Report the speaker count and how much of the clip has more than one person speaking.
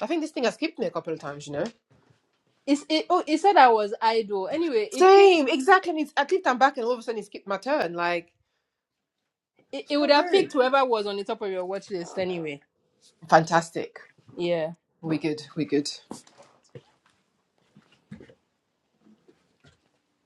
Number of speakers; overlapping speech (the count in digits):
2, about 4%